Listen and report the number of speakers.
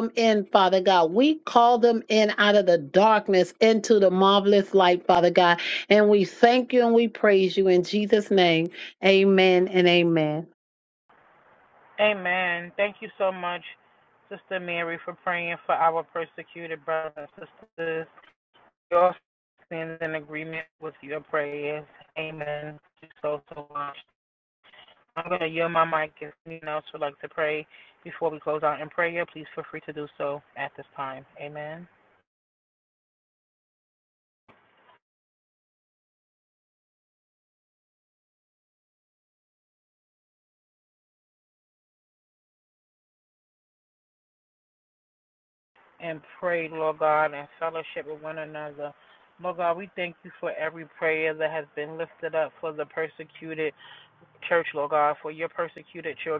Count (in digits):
2